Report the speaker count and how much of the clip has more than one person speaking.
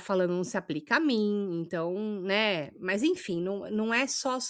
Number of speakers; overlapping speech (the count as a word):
one, no overlap